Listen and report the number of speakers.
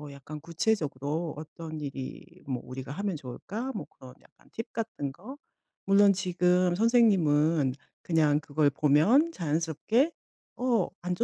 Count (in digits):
1